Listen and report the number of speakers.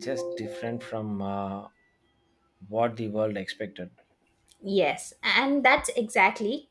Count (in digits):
2